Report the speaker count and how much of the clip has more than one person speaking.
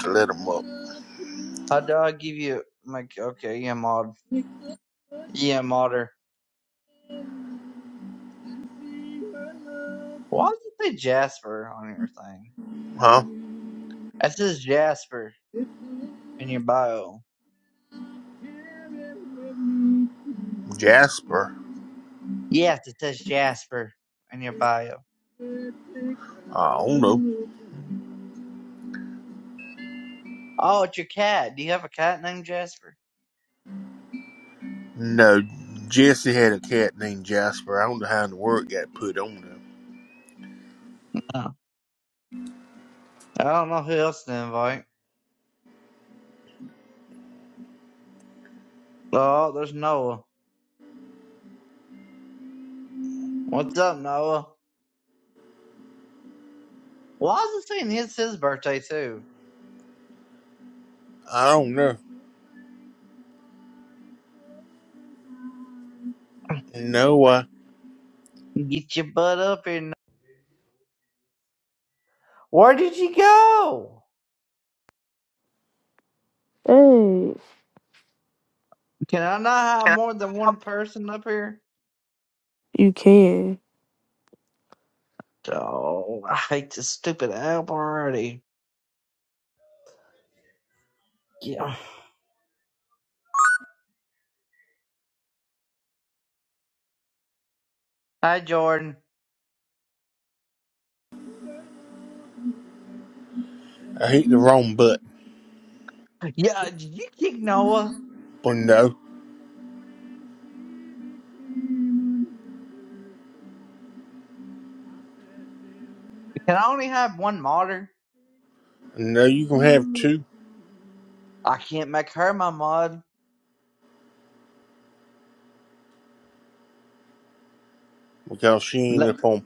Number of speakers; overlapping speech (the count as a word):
three, under 1%